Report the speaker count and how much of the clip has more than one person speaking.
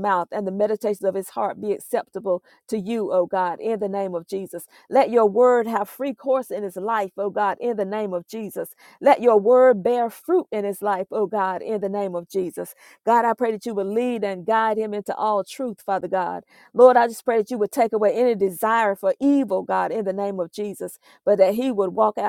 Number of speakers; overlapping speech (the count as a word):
one, no overlap